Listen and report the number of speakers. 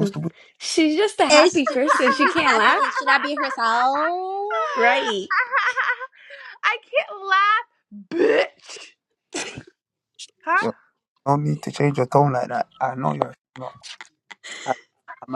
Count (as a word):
four